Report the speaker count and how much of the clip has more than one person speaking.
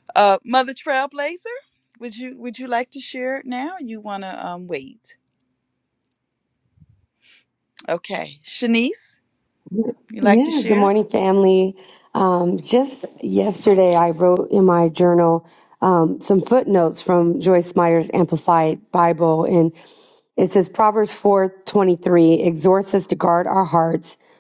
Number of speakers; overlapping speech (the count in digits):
2, about 3%